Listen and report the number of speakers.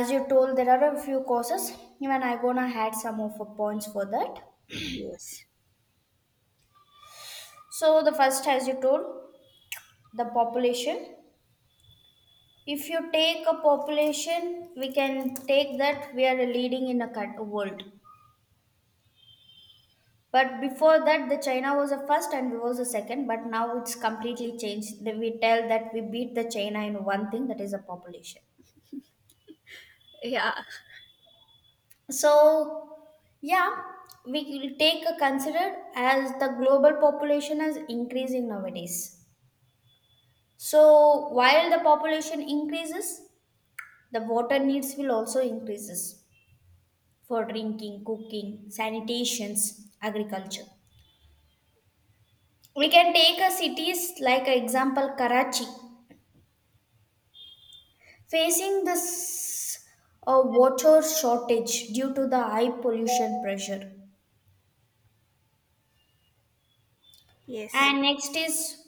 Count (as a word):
two